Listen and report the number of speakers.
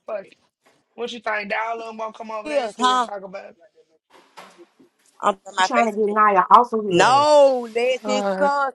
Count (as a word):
three